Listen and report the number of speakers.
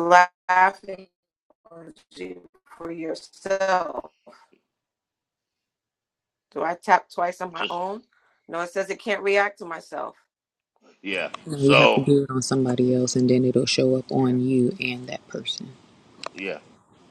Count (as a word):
three